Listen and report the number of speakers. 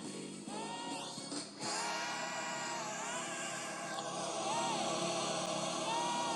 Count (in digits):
0